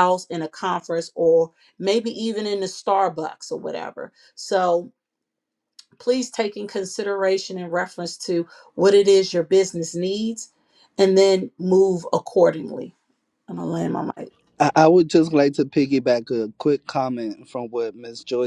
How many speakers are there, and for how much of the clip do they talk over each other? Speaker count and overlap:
2, no overlap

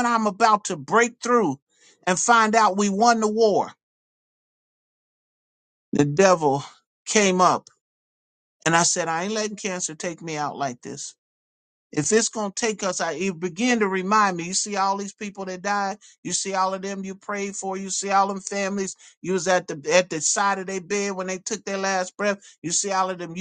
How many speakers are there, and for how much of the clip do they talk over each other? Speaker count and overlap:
1, no overlap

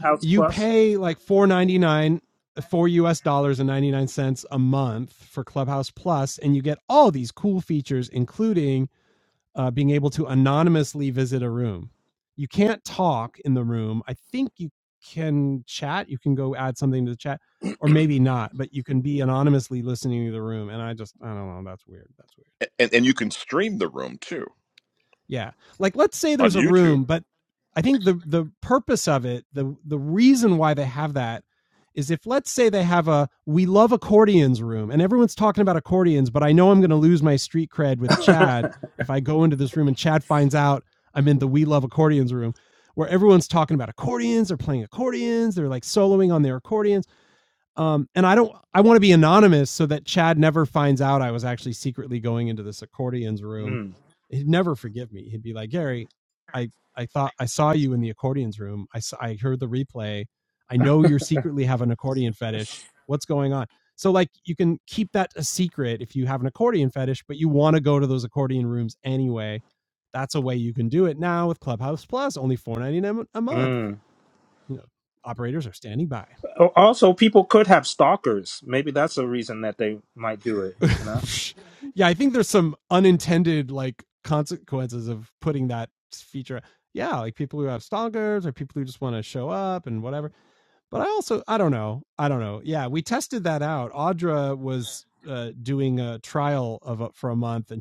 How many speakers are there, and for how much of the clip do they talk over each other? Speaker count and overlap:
3, about 2%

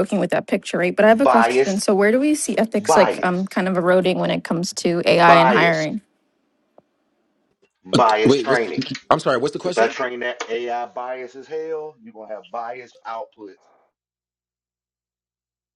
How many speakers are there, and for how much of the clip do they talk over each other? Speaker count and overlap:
3, about 19%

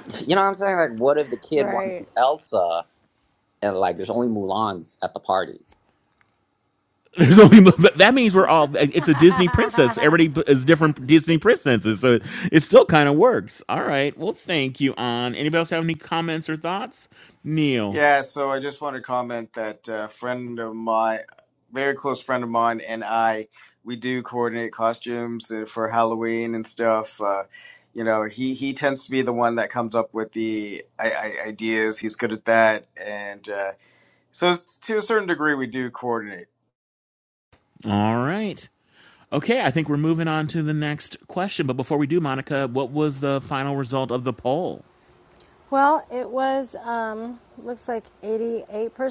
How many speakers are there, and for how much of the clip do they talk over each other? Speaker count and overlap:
4, about 1%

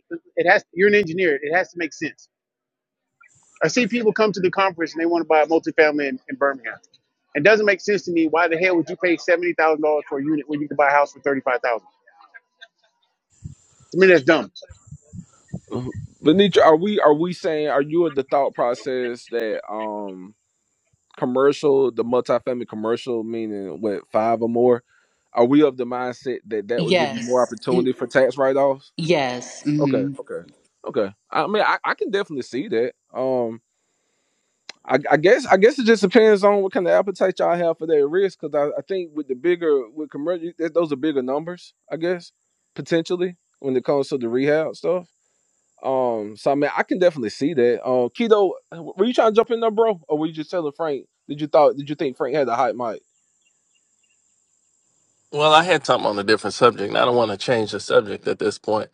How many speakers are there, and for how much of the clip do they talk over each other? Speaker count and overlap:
4, about 3%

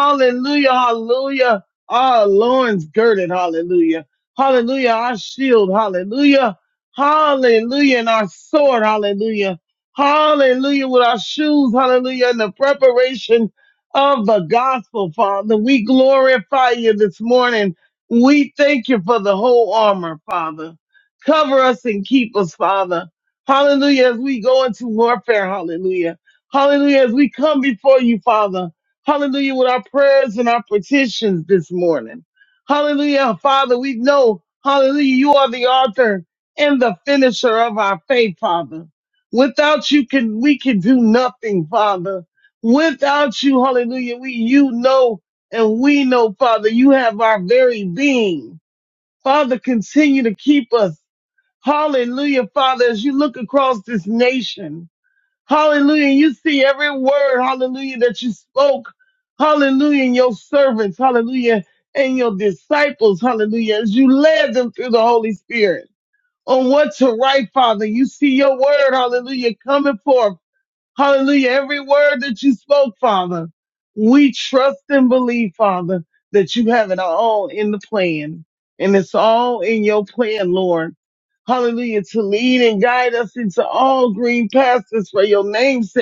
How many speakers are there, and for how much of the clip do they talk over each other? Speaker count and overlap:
1, no overlap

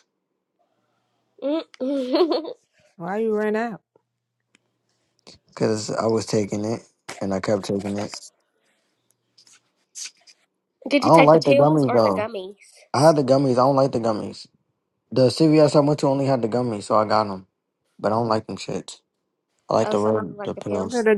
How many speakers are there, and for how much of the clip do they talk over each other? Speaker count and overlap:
3, about 12%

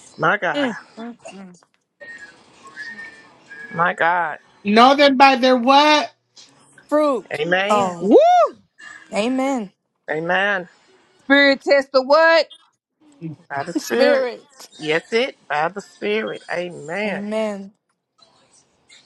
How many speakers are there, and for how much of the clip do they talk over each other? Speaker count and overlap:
4, about 9%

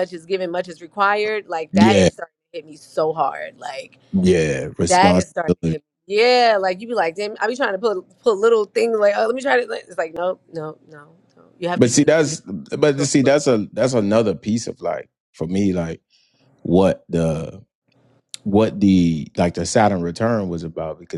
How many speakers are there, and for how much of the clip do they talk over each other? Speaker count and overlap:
2, about 10%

